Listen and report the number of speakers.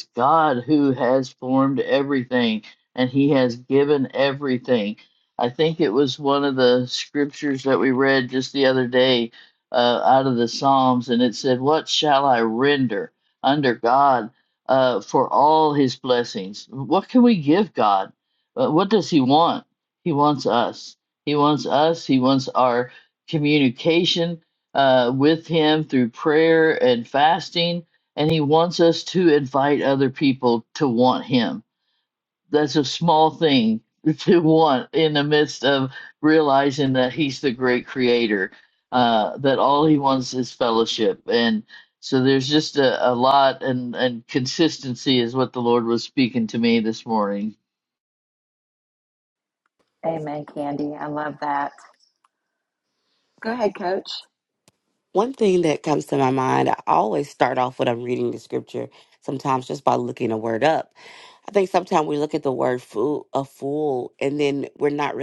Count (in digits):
3